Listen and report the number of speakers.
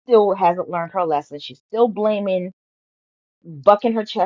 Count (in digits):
1